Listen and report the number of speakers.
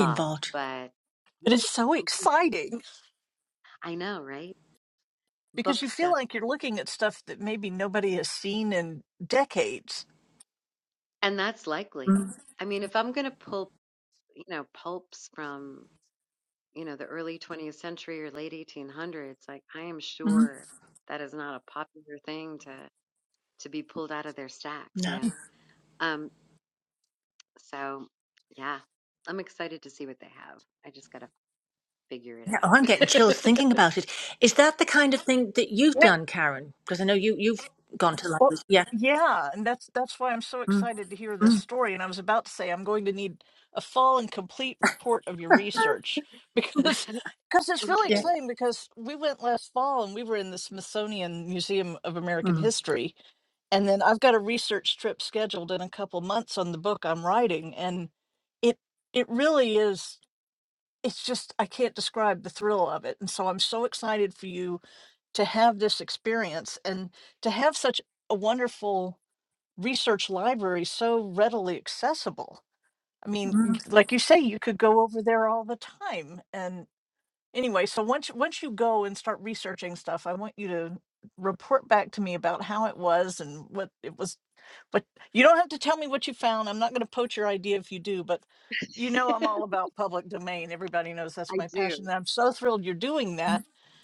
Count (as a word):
three